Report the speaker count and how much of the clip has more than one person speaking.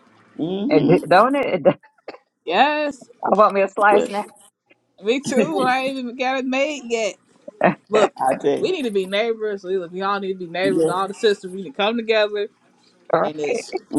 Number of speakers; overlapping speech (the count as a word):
three, about 13%